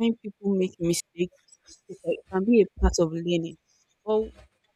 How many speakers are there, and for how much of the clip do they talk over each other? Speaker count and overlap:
one, no overlap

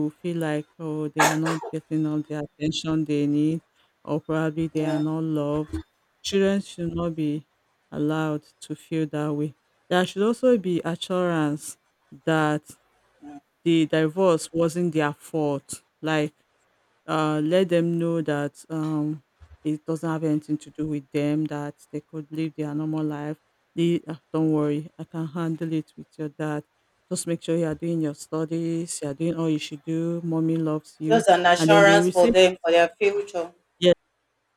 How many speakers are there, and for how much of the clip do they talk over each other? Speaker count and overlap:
two, about 4%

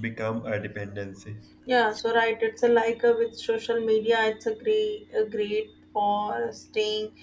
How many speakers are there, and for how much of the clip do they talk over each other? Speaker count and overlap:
two, no overlap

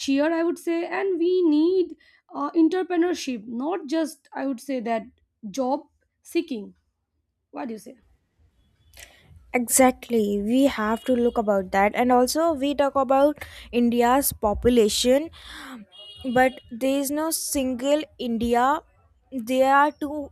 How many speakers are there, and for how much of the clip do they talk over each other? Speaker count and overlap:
two, no overlap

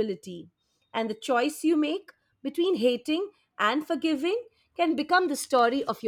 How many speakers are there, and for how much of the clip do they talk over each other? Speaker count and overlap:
one, no overlap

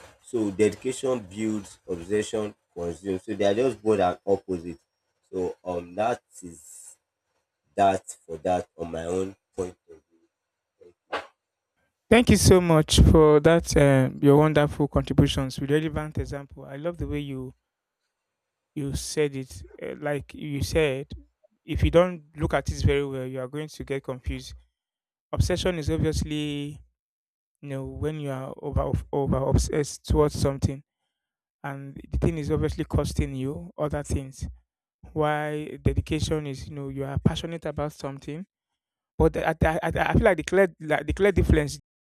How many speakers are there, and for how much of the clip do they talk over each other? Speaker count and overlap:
two, no overlap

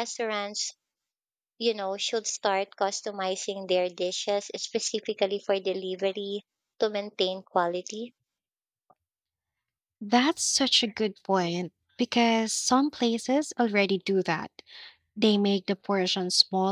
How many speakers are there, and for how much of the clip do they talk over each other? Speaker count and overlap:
two, no overlap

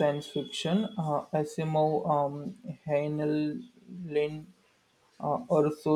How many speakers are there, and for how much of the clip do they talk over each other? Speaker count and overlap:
one, no overlap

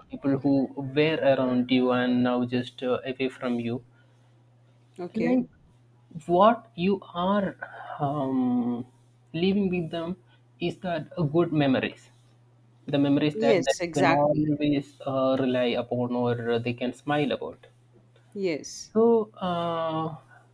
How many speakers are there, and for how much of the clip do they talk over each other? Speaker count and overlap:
two, about 7%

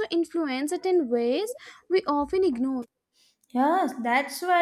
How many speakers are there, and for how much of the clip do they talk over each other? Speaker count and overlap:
two, no overlap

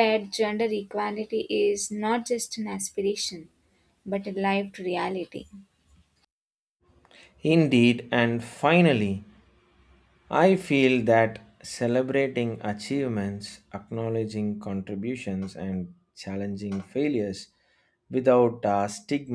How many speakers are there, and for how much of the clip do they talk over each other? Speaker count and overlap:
two, no overlap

